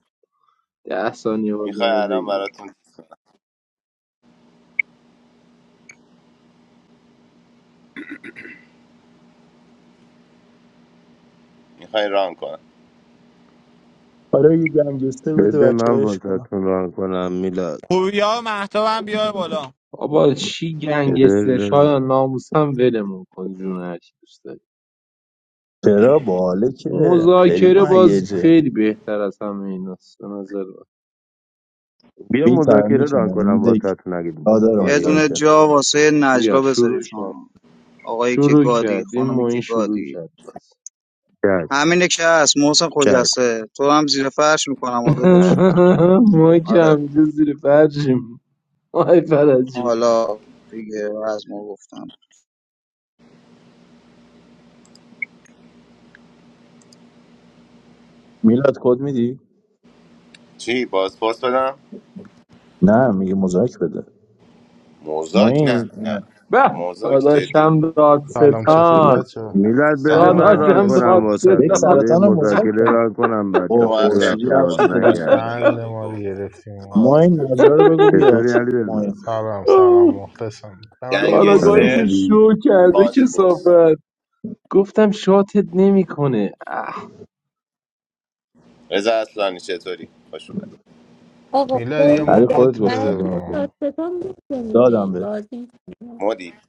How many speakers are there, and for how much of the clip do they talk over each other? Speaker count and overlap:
eight, about 23%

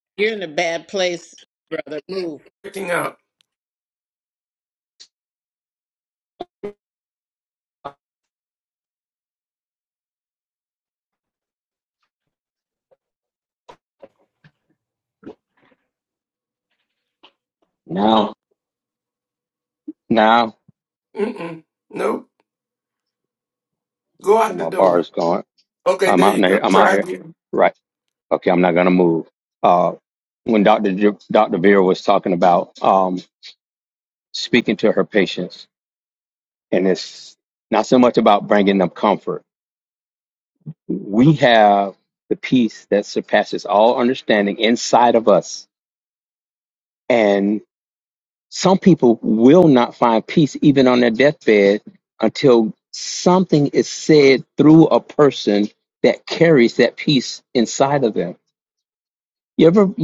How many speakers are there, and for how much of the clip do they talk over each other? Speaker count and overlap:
three, about 3%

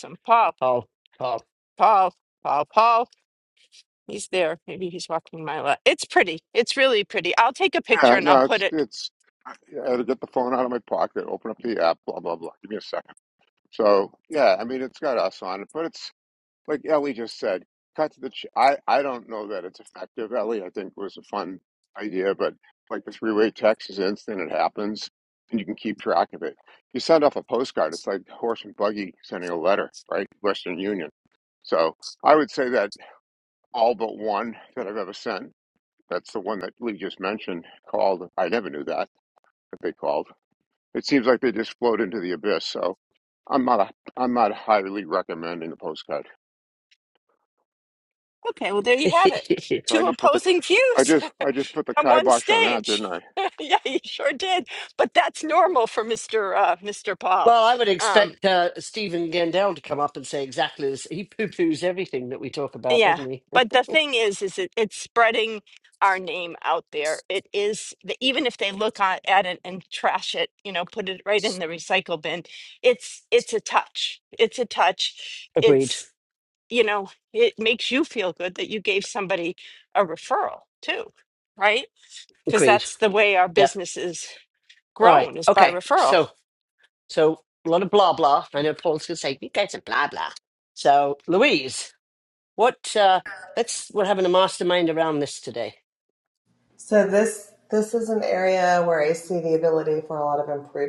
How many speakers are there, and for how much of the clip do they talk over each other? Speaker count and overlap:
four, about 6%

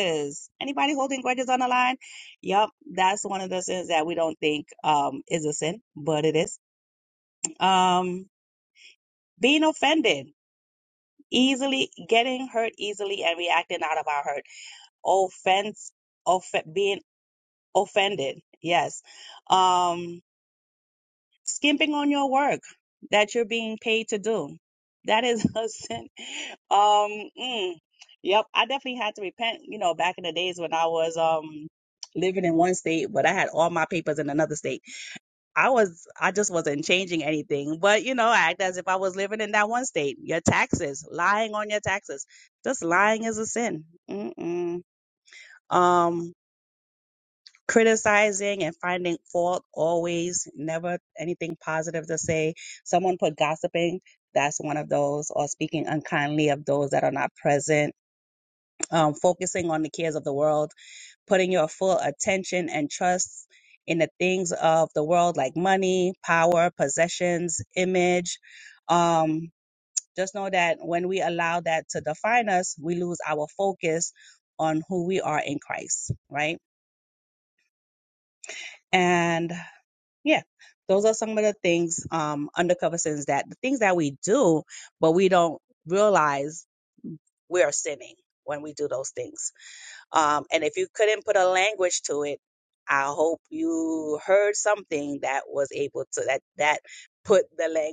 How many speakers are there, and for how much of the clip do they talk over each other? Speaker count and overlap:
one, no overlap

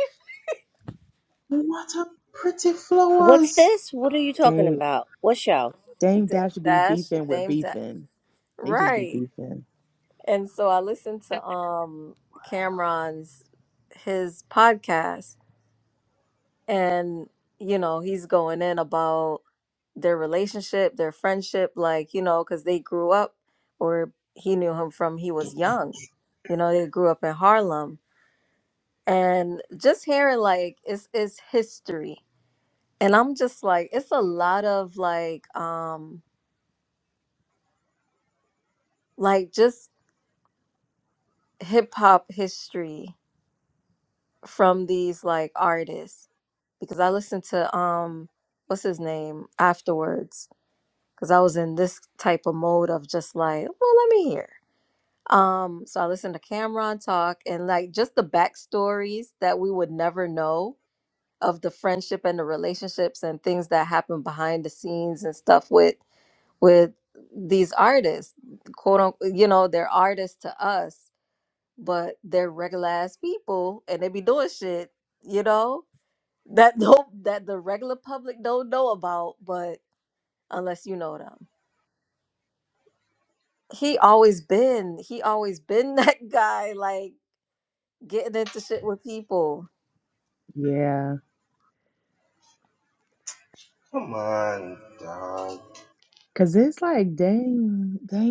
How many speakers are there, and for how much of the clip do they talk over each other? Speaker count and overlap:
four, about 2%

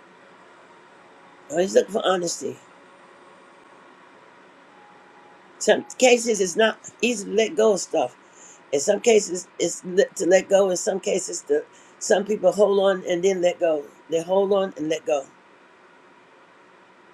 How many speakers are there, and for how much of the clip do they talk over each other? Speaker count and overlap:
one, no overlap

